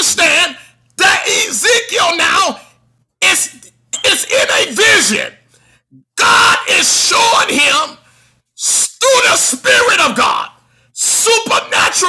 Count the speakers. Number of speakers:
one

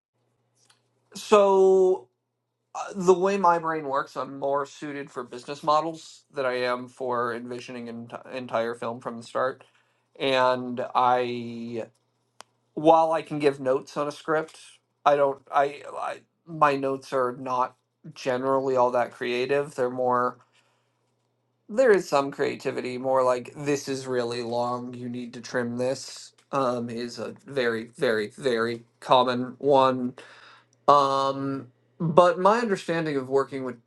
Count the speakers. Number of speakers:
one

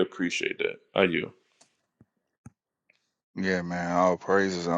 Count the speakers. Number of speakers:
two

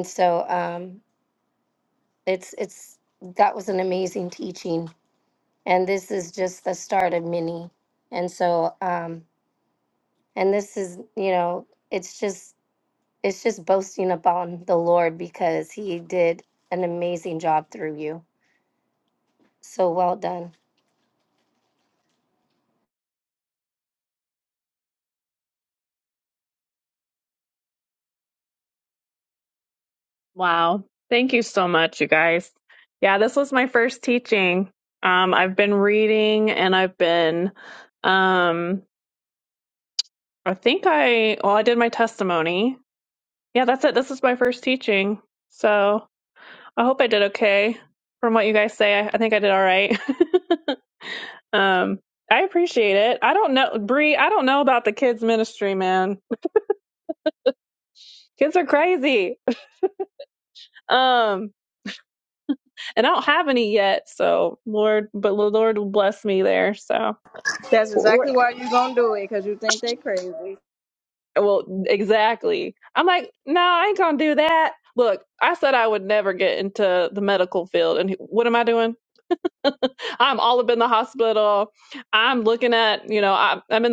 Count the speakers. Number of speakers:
three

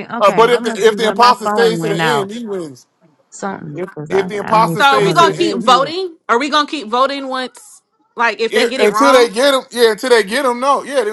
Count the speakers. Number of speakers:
three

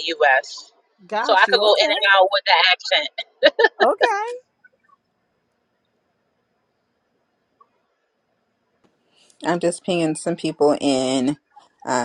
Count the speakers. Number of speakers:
three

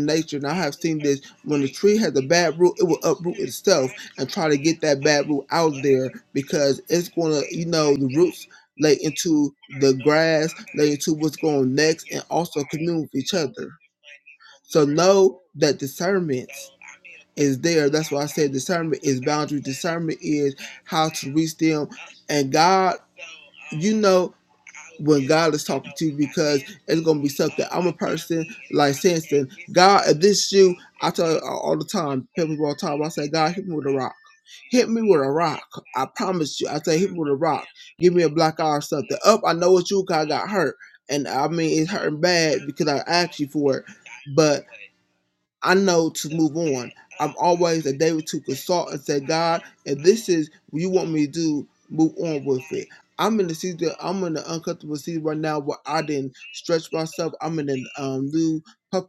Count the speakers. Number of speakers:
one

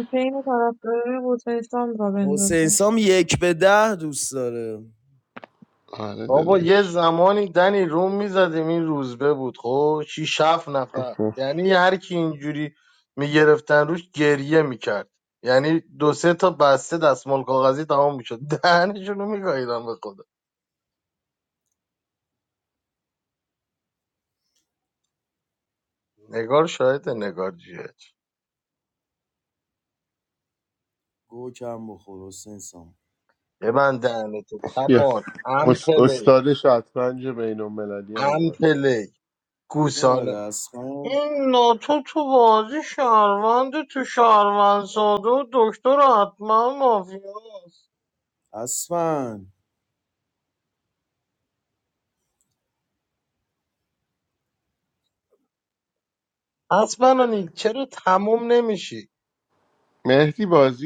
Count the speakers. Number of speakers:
four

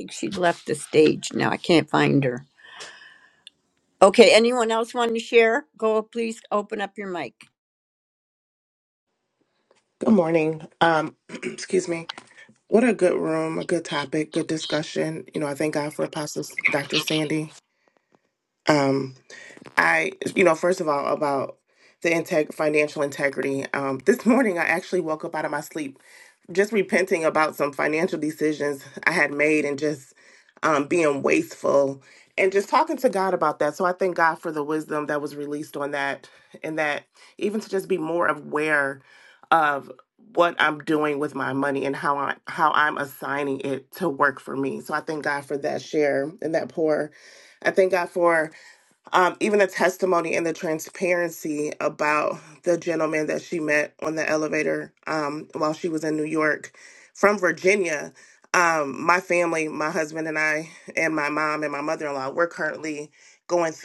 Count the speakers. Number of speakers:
two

